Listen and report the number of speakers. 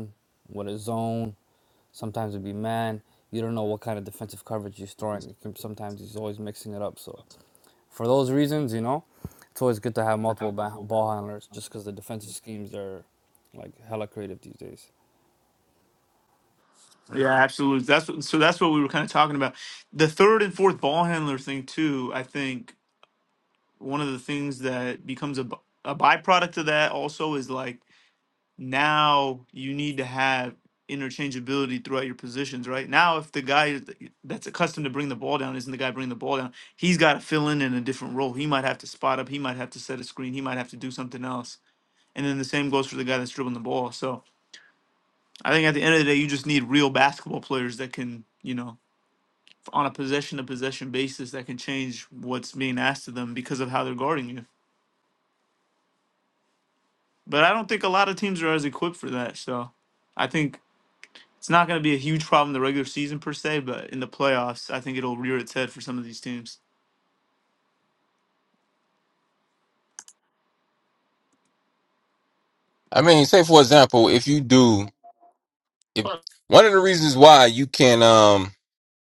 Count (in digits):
3